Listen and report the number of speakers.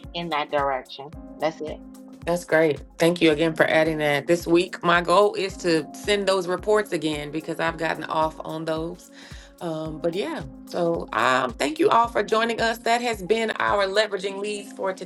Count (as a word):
two